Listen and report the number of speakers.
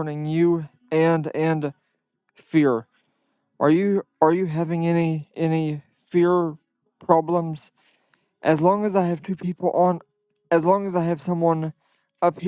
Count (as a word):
one